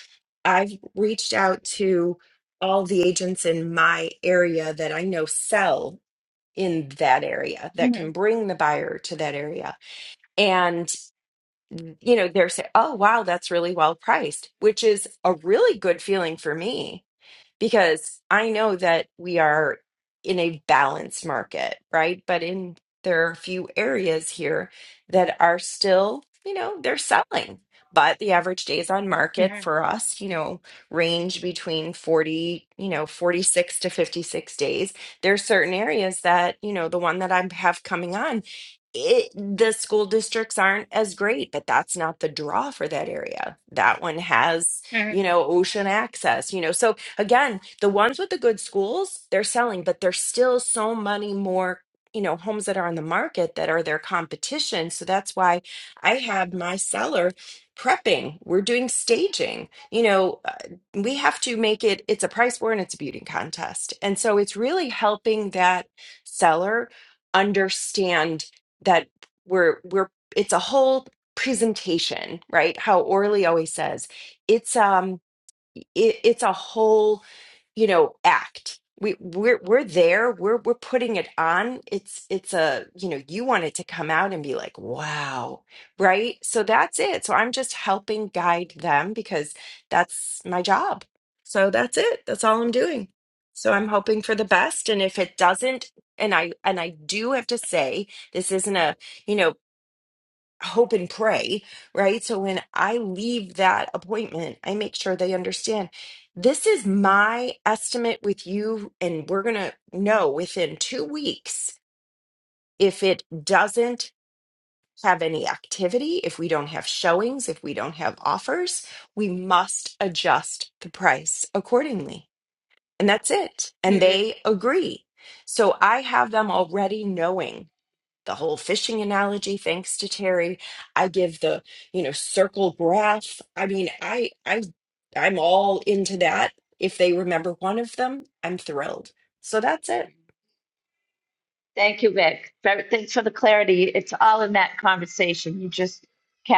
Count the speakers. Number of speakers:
2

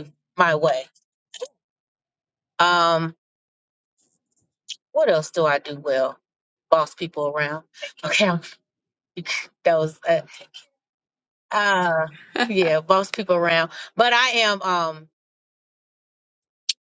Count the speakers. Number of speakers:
1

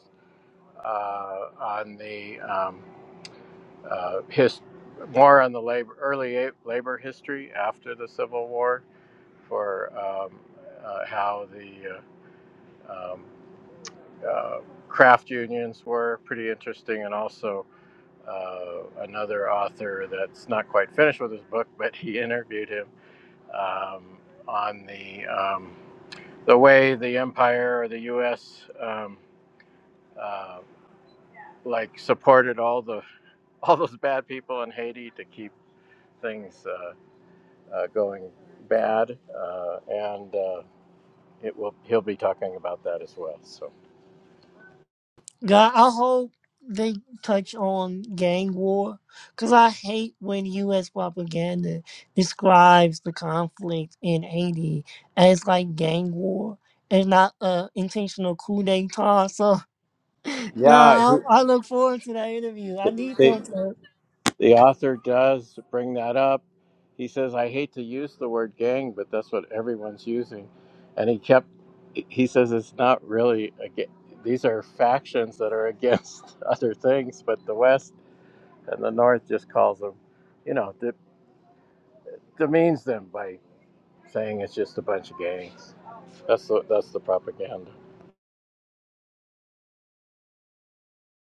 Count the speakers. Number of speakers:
2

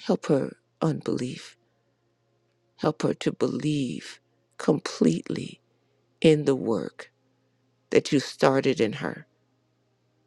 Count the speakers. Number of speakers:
1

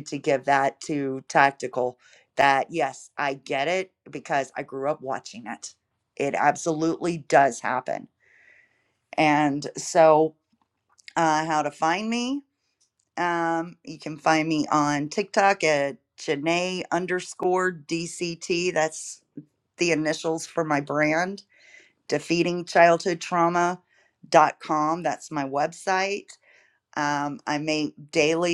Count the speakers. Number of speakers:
1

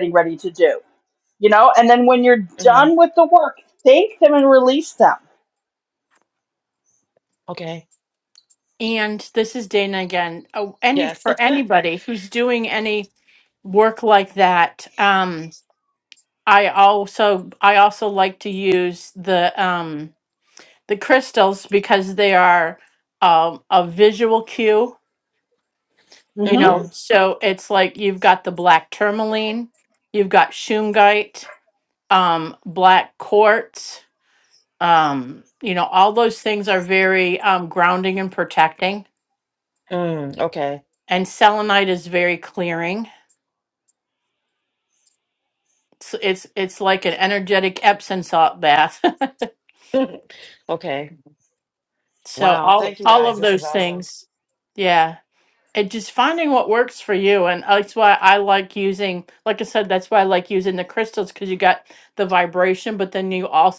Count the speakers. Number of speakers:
3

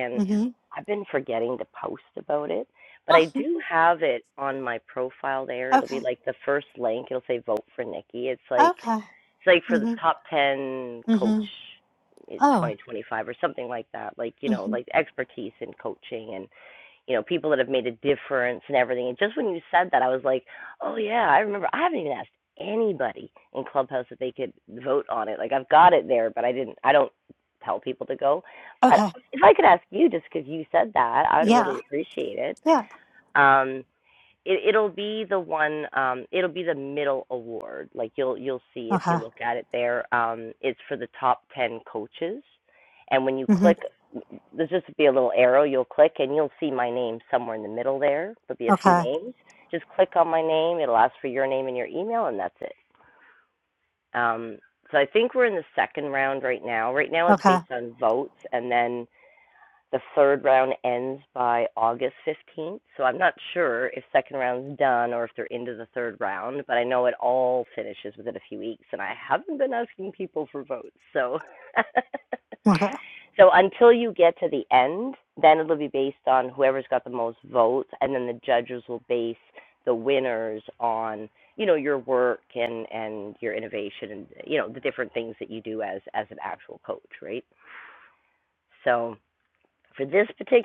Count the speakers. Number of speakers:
2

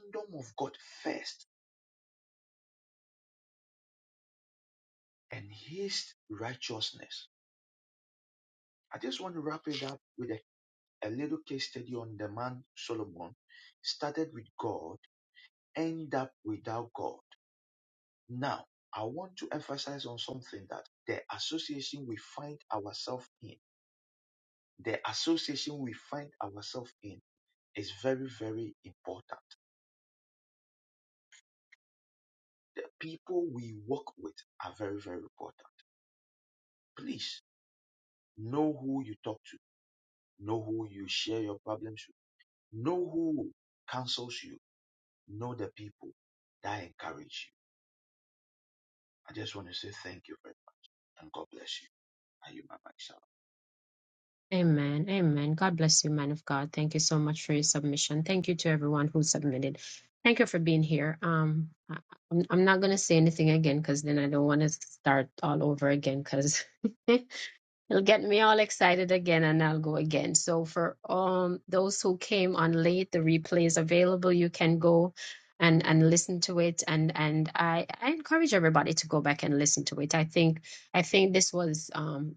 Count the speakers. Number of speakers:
2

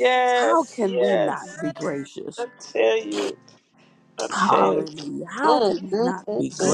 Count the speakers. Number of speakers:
2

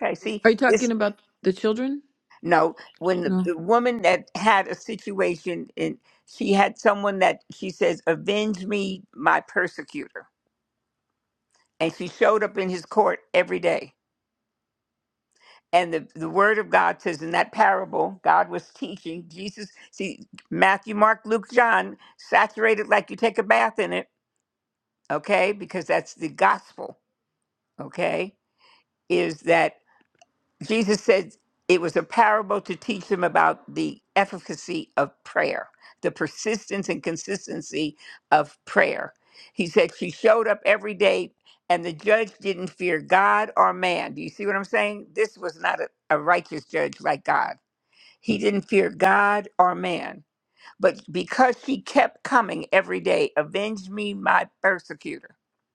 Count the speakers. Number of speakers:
2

